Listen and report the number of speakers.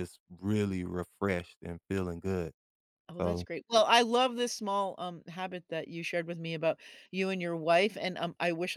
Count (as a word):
two